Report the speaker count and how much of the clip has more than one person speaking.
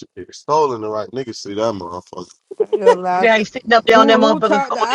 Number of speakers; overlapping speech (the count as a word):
three, about 23%